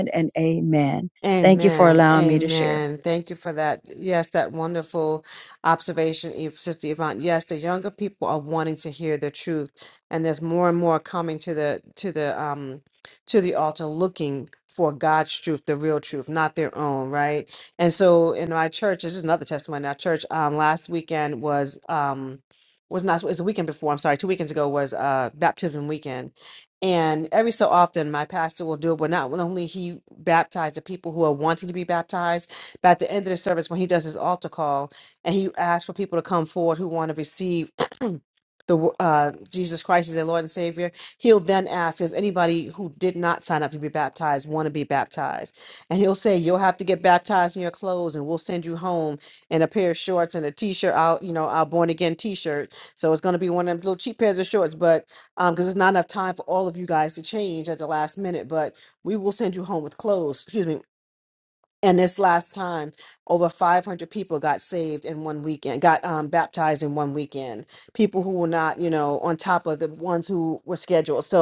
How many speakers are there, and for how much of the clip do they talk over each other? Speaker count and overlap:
2, about 2%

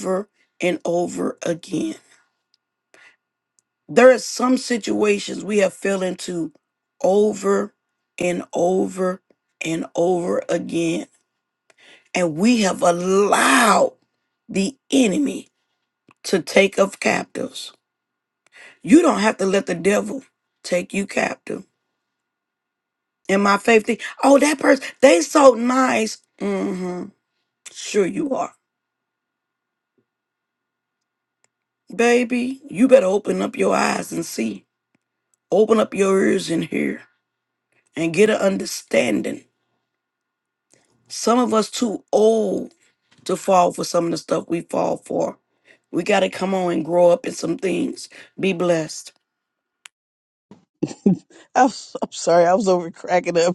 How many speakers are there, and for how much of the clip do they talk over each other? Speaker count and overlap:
2, no overlap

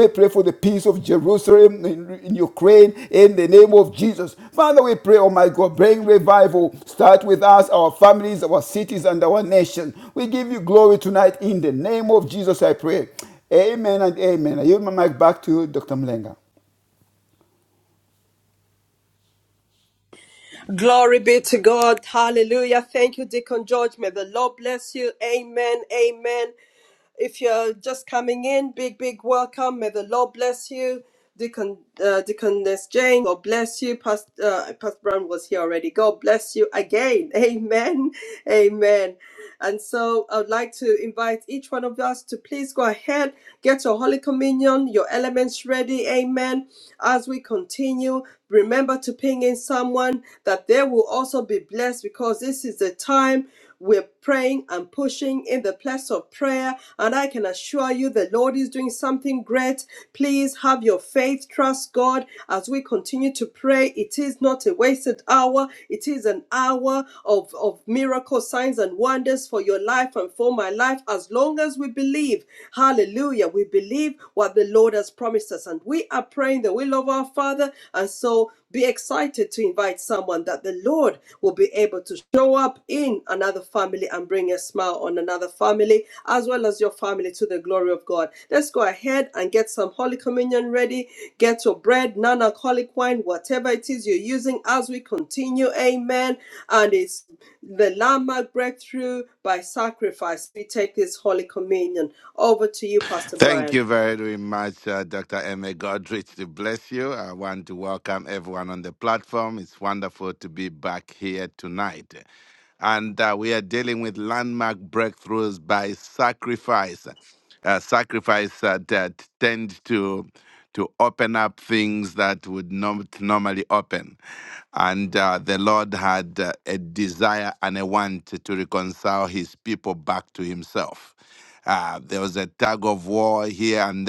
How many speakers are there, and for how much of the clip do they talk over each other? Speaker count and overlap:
3, under 1%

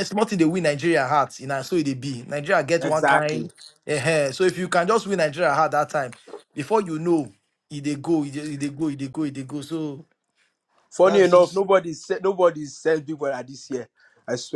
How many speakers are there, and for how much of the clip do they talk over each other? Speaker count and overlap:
2, about 8%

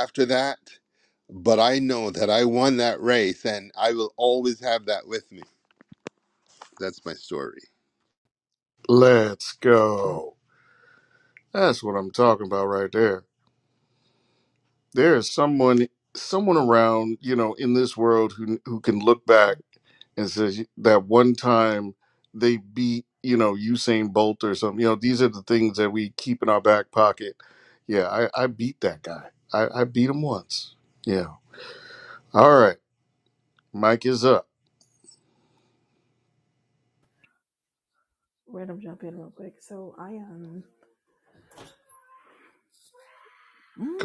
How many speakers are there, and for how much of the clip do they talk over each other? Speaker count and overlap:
3, under 1%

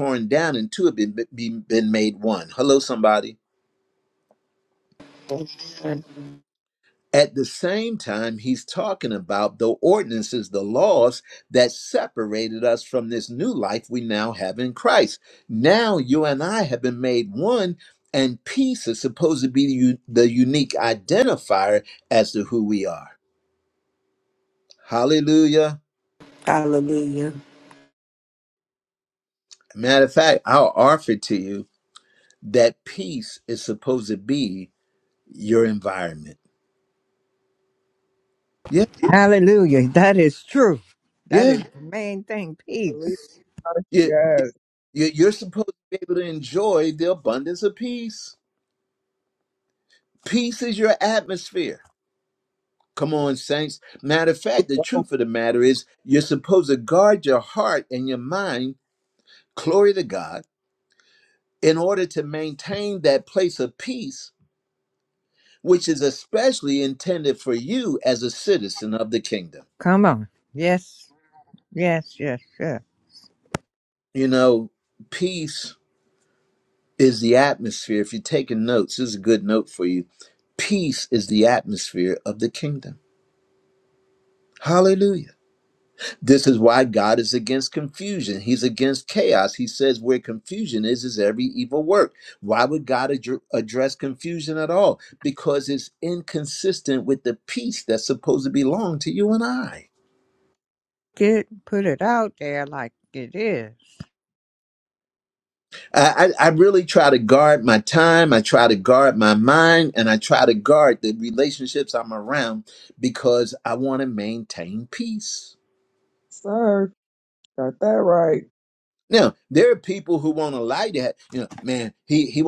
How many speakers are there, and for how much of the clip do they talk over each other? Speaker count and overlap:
4, about 1%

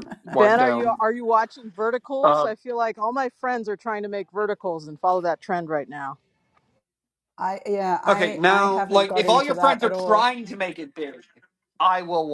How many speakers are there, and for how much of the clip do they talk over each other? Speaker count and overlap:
3, about 24%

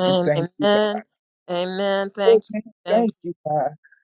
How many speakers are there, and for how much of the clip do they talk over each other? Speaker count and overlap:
2, about 20%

